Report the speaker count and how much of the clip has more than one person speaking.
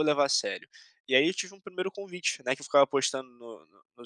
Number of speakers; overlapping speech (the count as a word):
one, no overlap